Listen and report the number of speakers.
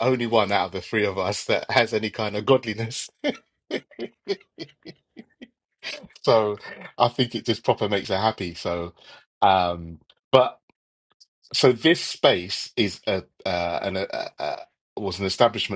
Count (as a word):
one